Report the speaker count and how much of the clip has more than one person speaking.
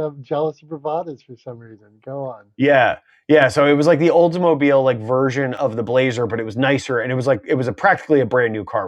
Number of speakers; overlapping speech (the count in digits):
2, no overlap